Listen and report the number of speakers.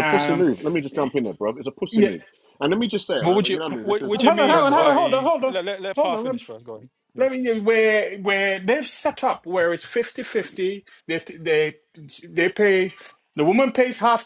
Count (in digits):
3